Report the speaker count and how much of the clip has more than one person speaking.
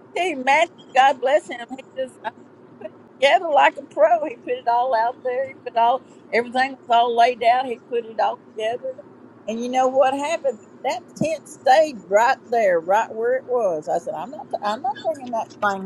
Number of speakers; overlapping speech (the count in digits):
1, no overlap